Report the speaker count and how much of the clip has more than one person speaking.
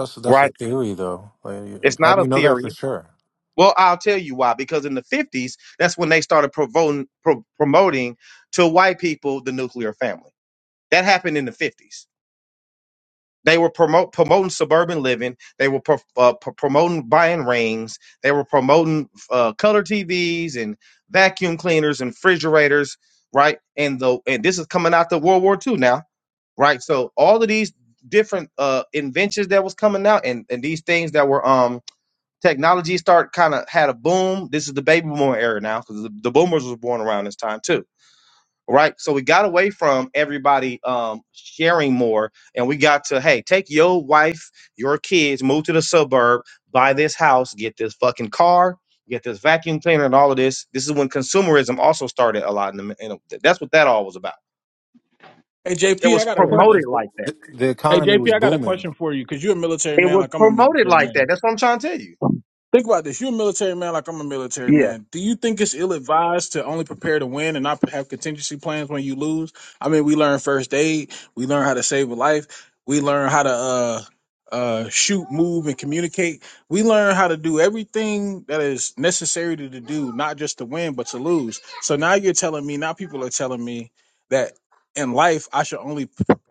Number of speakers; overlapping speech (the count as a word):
three, about 6%